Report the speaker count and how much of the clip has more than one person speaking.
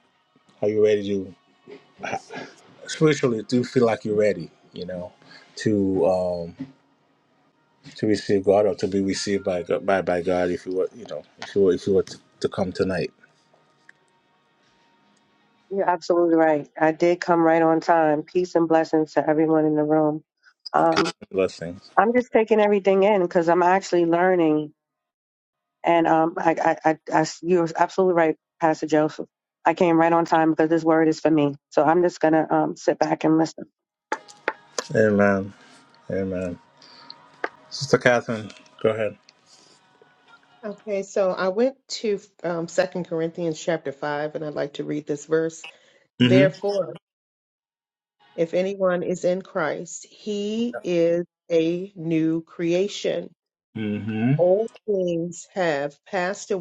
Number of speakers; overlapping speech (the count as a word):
three, about 1%